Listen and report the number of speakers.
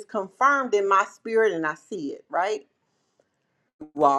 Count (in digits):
1